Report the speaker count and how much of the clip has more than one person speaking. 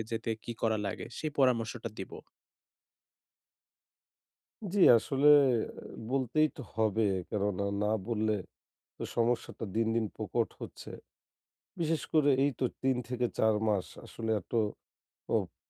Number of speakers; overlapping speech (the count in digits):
2, no overlap